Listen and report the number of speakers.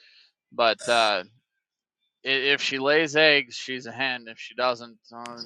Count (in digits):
1